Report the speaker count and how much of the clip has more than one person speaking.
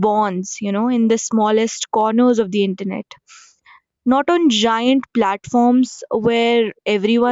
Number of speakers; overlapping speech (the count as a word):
one, no overlap